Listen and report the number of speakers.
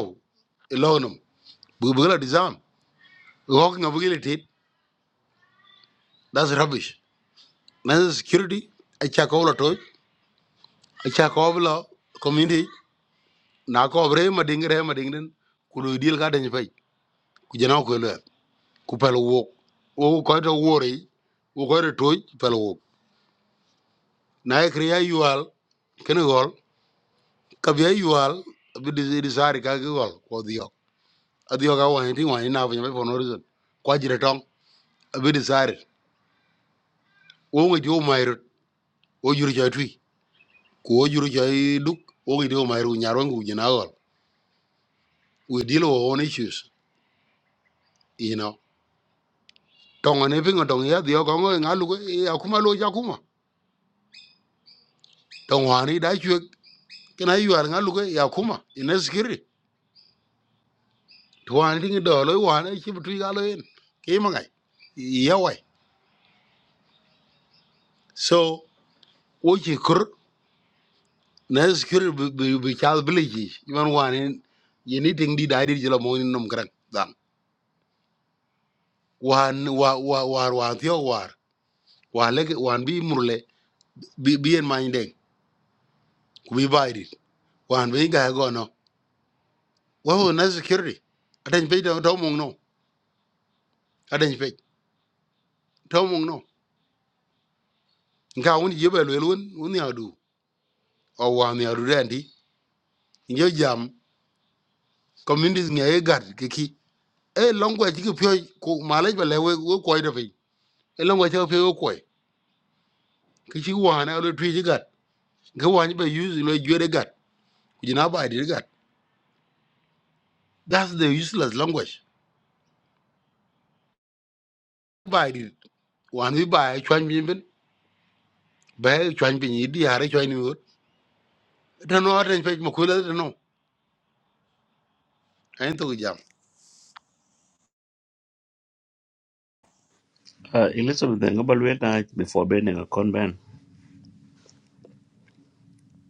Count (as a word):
two